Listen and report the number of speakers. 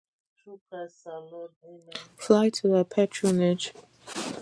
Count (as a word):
two